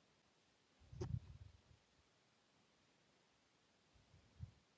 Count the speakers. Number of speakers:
zero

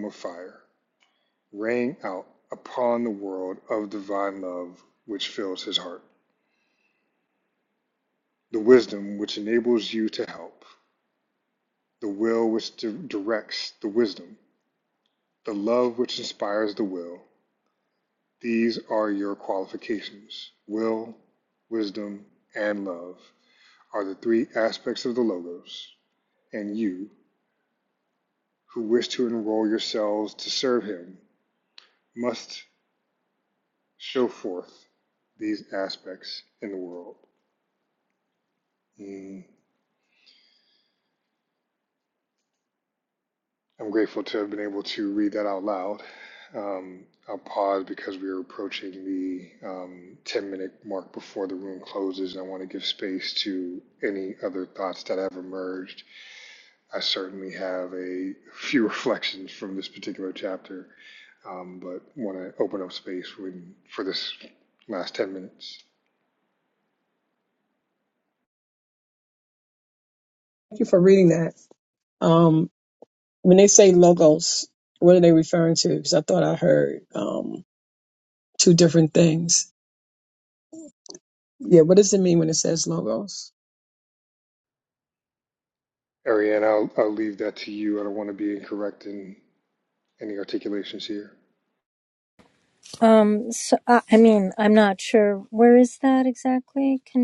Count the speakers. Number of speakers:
three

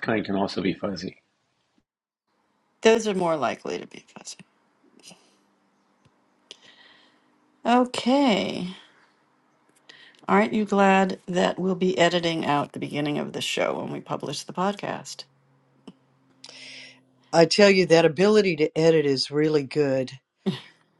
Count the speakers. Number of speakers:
three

